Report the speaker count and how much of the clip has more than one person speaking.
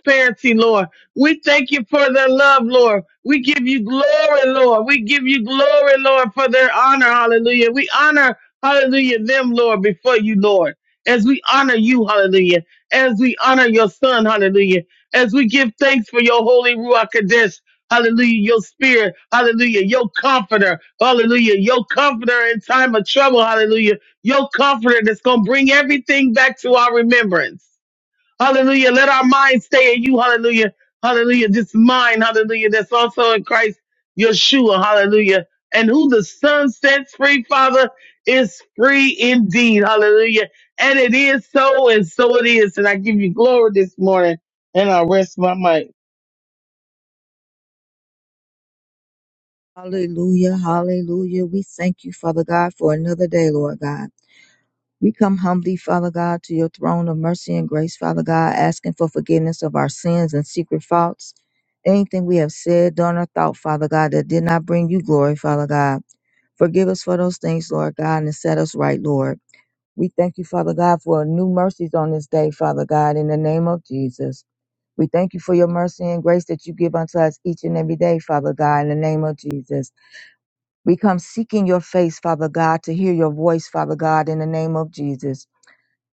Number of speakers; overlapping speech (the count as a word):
two, no overlap